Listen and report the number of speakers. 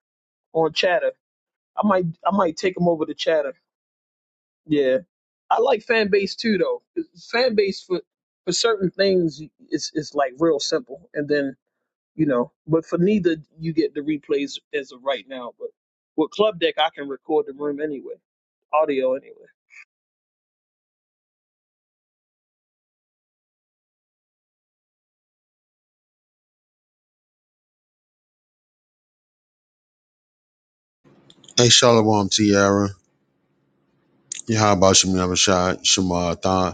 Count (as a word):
two